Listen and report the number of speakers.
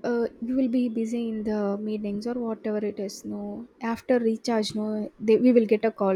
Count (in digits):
1